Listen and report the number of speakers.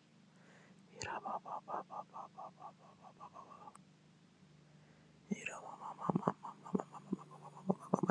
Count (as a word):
zero